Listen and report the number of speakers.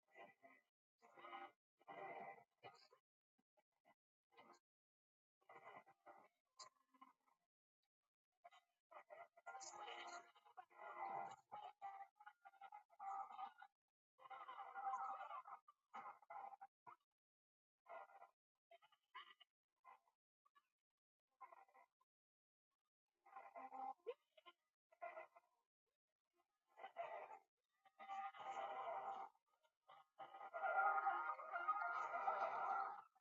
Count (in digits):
0